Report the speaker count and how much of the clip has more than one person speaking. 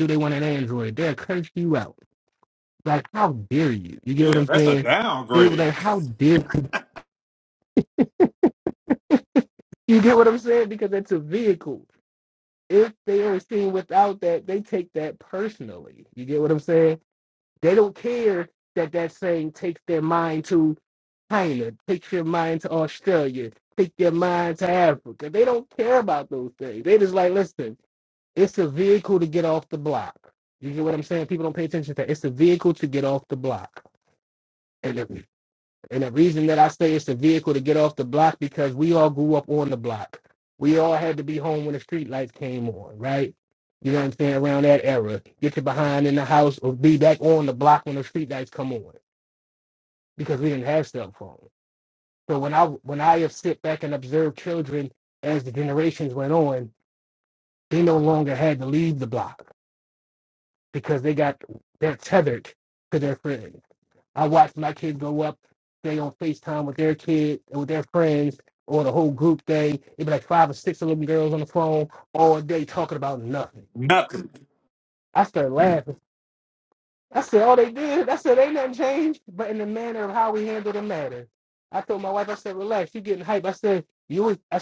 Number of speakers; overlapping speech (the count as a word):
two, about 1%